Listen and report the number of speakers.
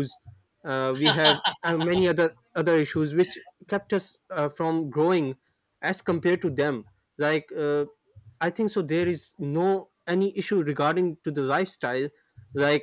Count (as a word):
one